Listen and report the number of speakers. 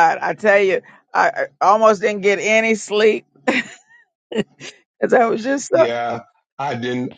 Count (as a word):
two